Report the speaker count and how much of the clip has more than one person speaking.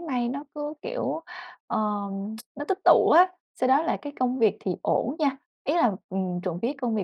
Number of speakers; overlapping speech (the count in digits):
1, no overlap